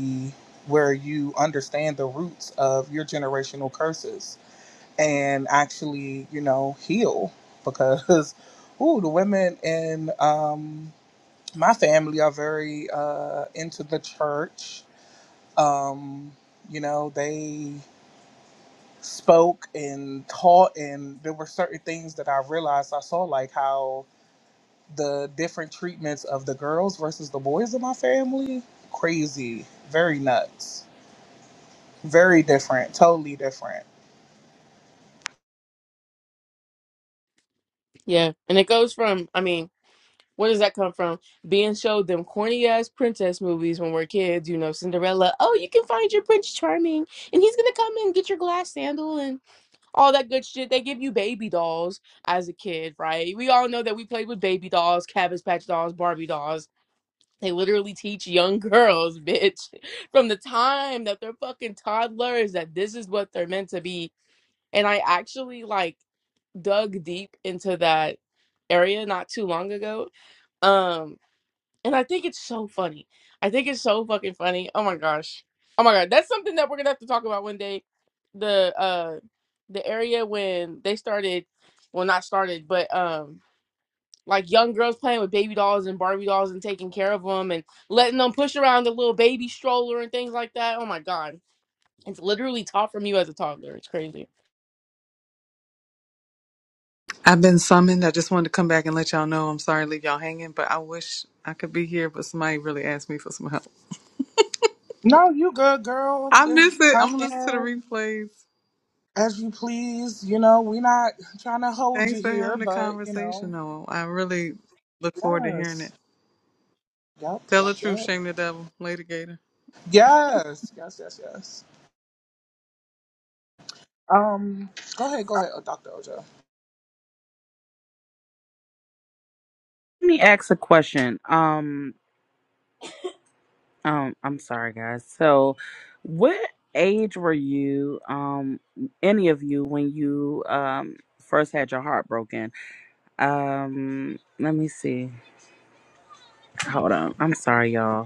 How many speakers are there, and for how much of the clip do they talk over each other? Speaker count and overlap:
4, about 3%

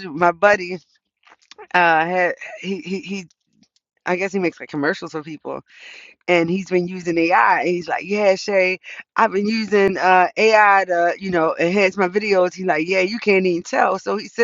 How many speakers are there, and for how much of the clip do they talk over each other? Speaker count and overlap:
1, no overlap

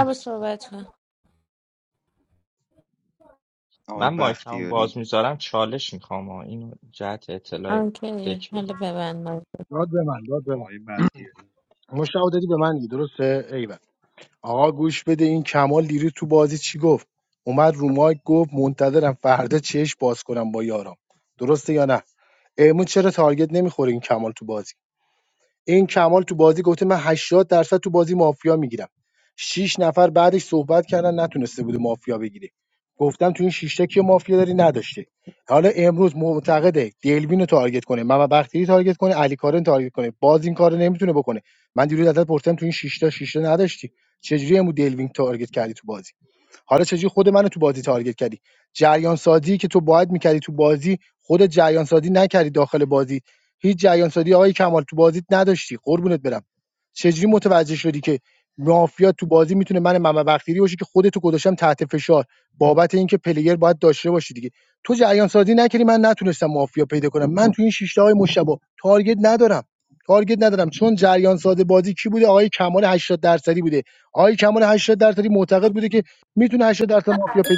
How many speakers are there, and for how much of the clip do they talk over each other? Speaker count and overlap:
4, about 2%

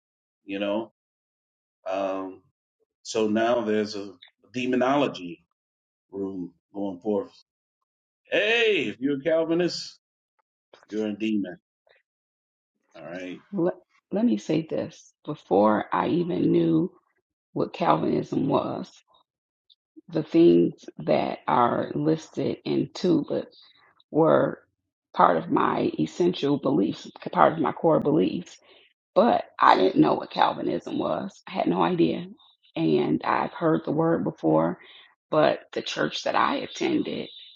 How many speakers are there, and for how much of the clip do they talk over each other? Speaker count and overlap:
2, no overlap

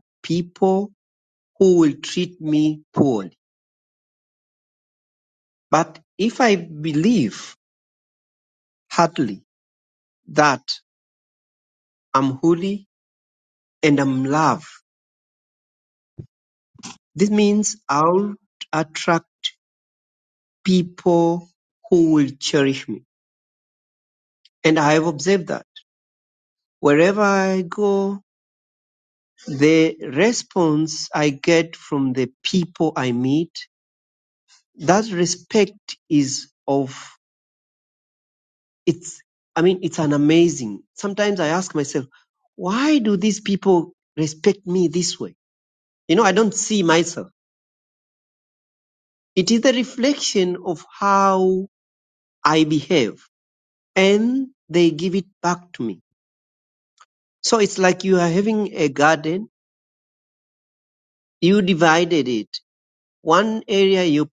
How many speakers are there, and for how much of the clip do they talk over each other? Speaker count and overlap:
1, no overlap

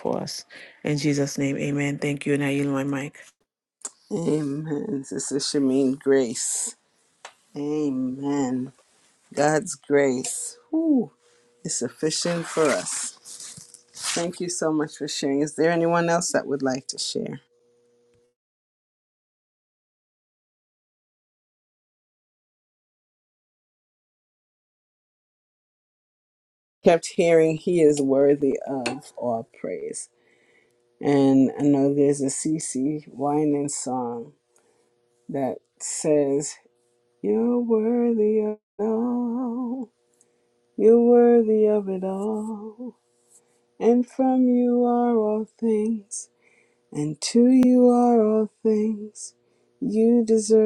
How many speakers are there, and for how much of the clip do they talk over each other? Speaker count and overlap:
2, no overlap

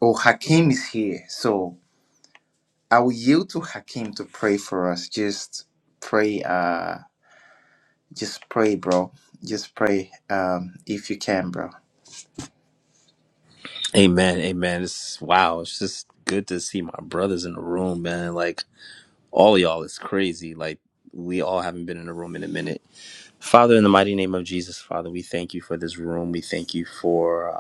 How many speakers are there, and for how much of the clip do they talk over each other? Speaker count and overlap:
2, no overlap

